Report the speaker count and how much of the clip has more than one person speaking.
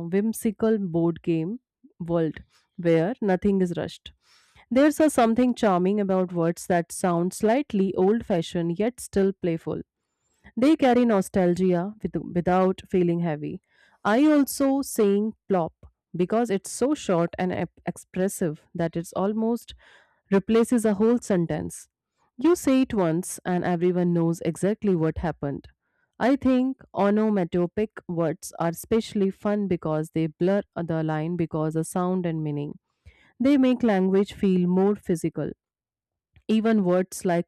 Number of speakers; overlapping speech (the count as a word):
one, no overlap